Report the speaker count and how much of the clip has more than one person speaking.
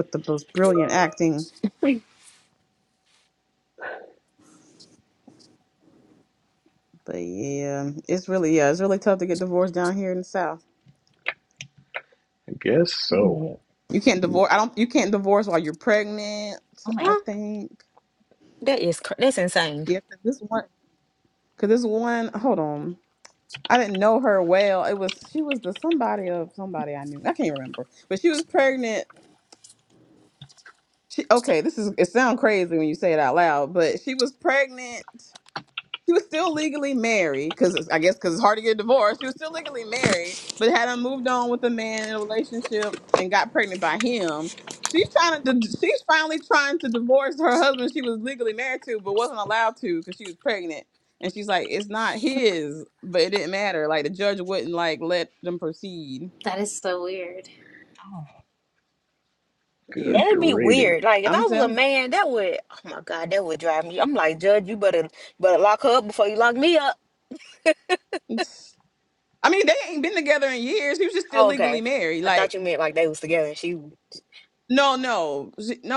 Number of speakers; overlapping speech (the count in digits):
4, about 4%